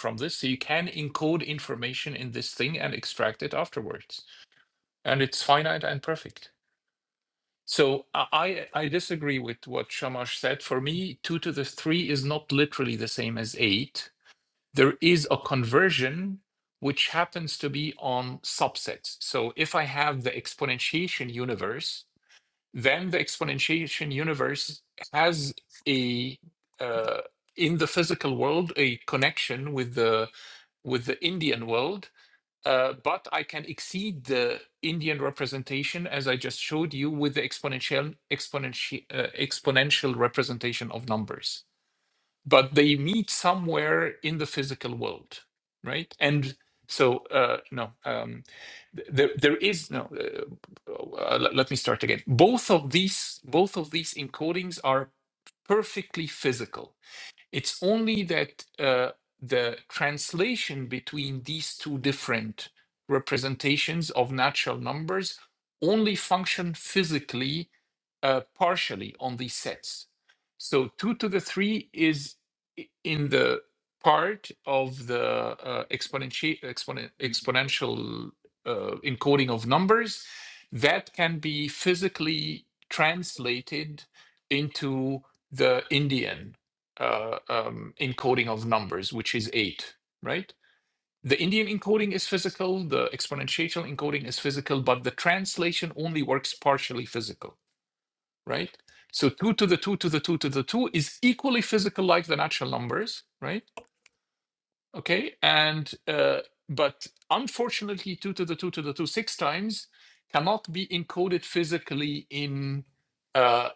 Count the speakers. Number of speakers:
one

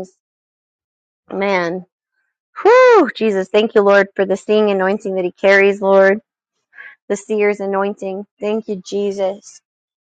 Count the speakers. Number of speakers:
one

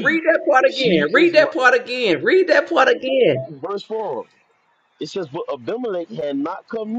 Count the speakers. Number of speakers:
two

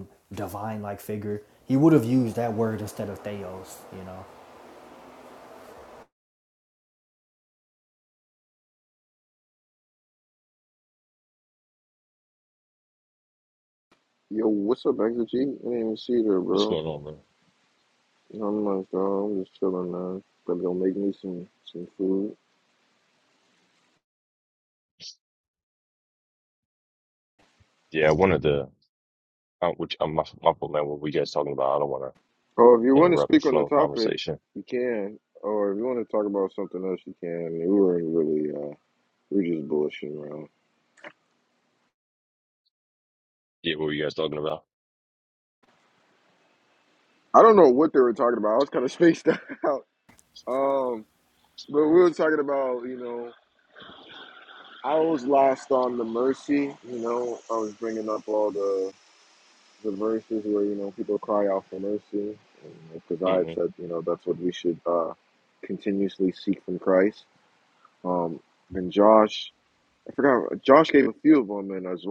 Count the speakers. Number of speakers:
three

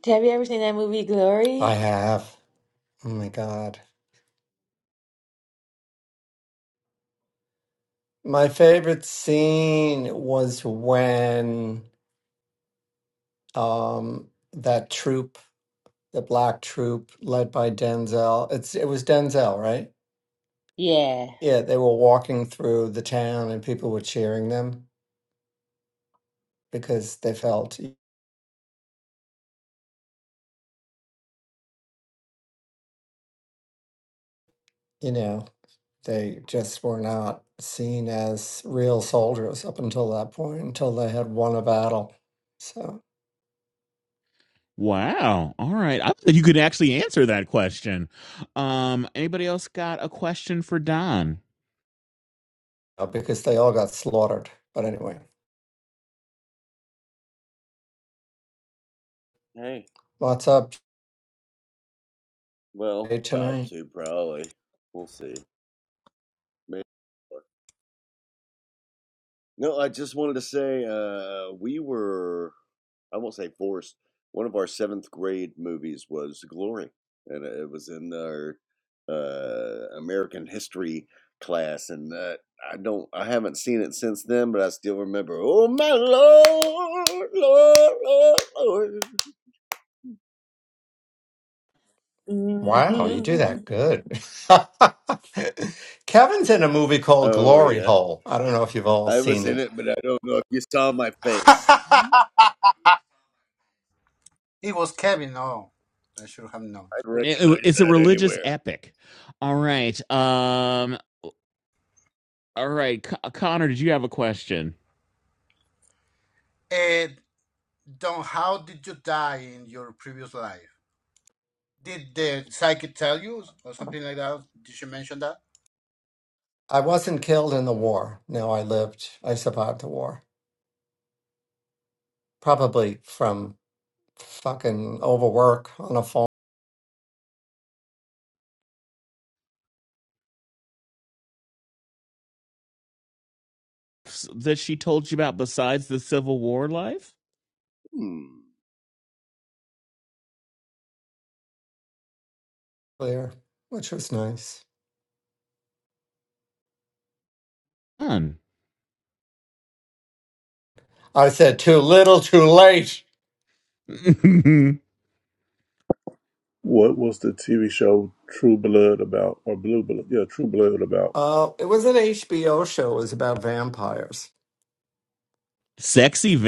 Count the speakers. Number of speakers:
six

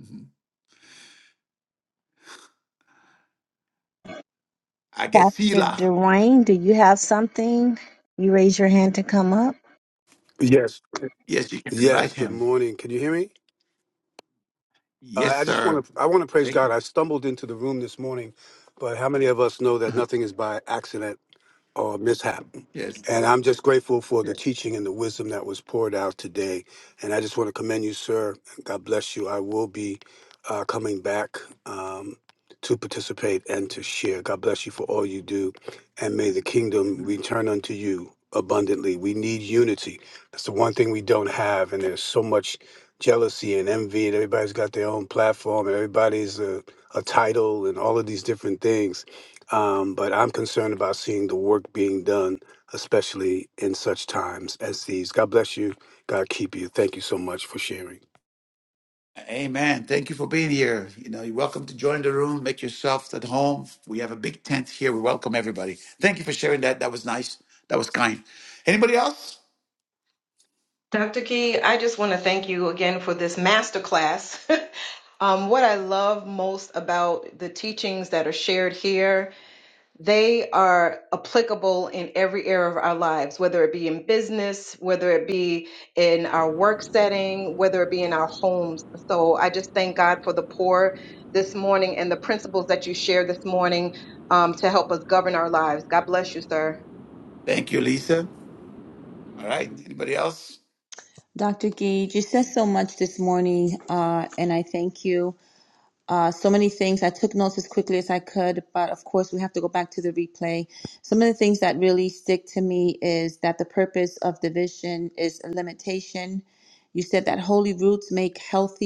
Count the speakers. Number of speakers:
five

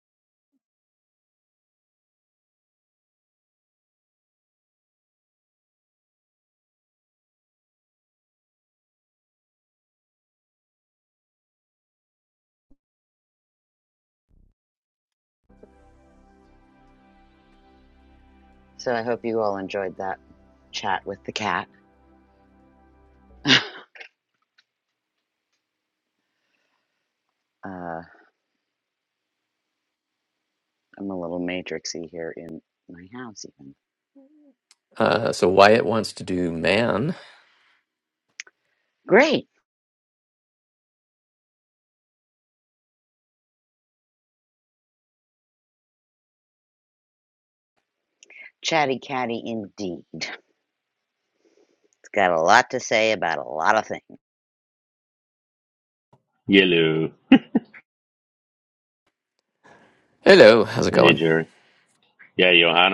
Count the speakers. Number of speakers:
three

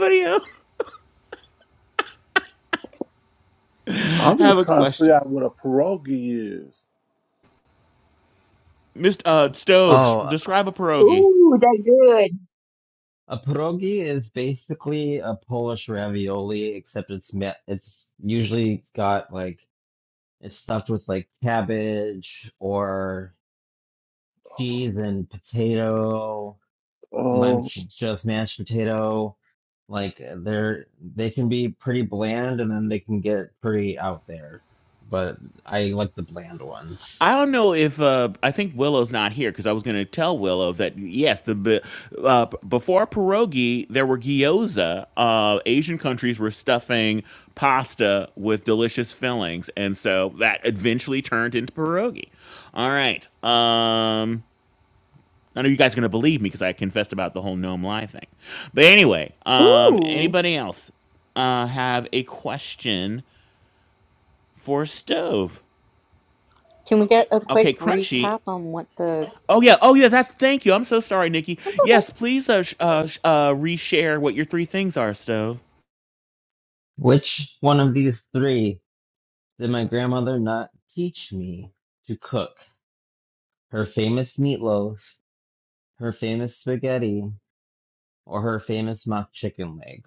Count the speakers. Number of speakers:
five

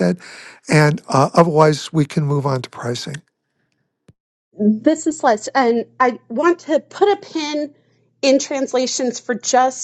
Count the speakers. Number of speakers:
two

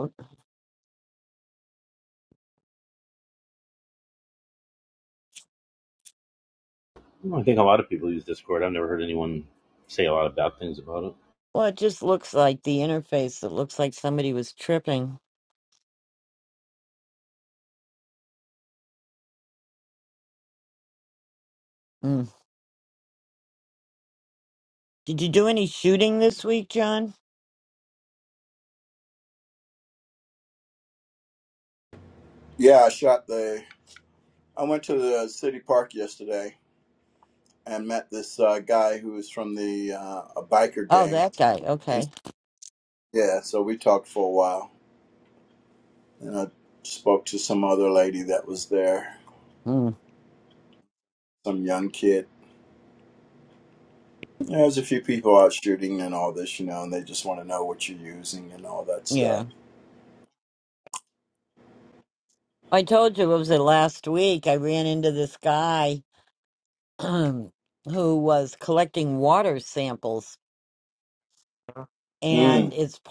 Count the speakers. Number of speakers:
three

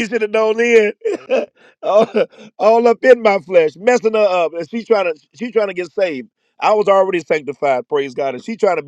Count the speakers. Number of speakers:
one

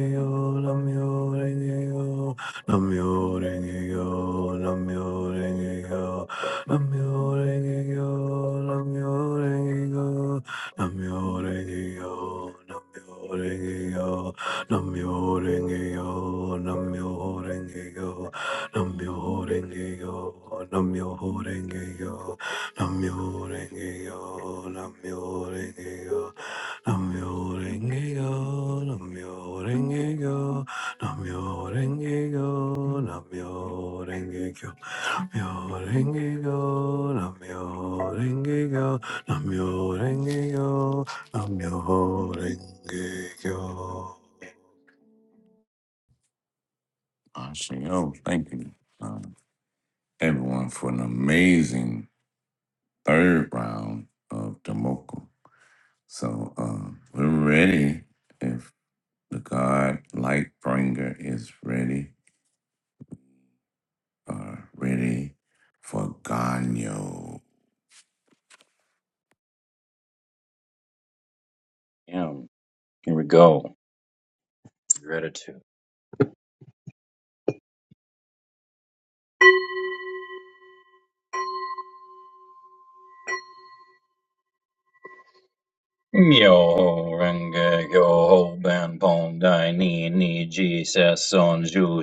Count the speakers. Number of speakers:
three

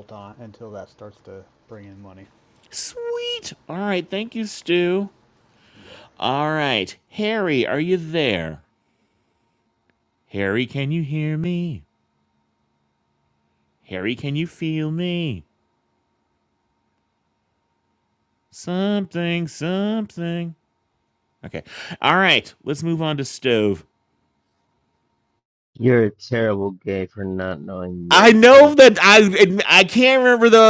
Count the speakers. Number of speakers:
three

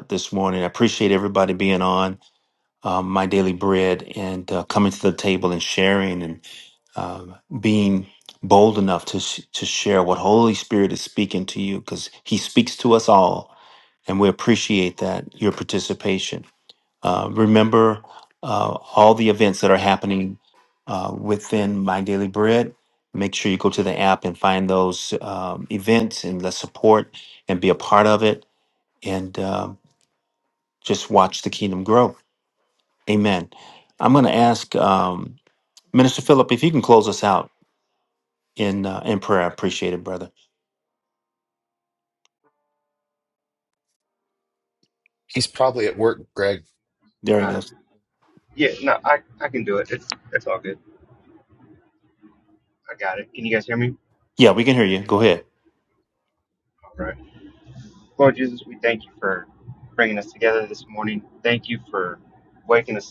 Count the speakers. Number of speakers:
three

